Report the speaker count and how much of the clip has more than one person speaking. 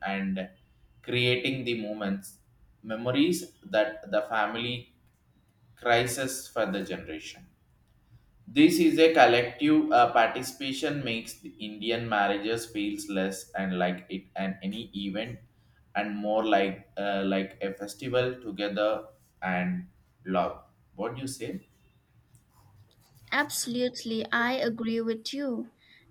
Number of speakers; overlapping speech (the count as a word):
two, no overlap